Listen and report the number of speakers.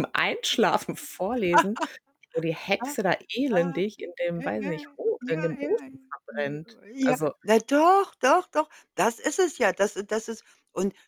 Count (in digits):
2